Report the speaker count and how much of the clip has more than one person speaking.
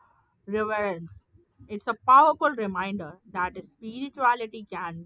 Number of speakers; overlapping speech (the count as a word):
one, no overlap